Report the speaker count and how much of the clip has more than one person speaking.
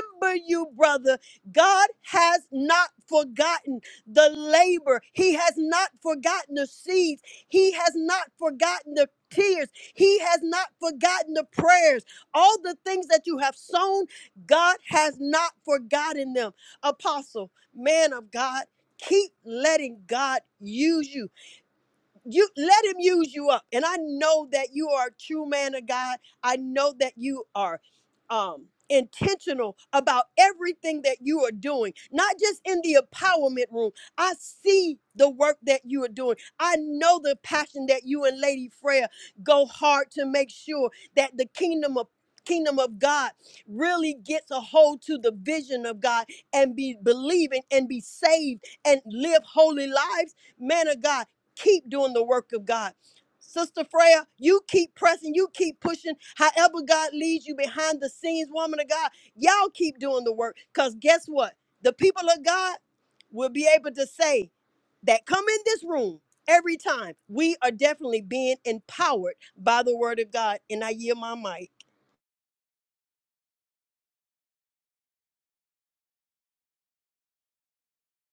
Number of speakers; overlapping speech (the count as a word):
one, no overlap